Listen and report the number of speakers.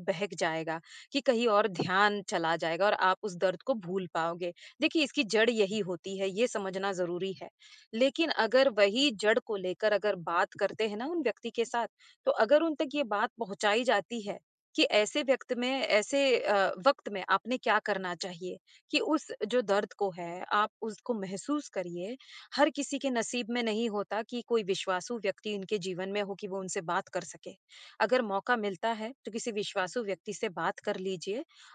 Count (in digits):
1